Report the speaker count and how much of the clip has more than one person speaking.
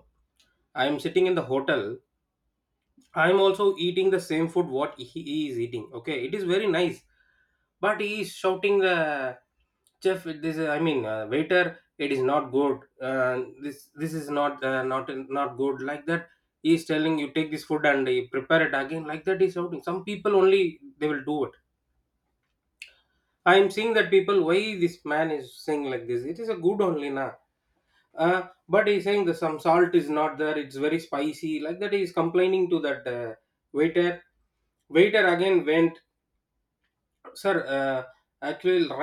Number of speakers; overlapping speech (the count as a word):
one, no overlap